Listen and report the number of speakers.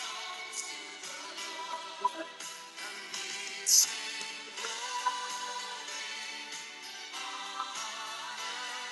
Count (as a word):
zero